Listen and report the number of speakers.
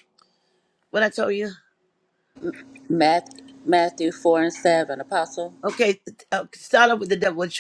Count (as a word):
two